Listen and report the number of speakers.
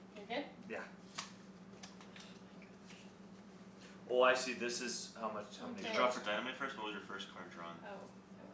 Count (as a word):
three